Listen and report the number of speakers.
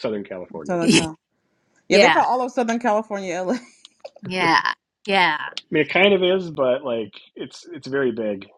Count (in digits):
3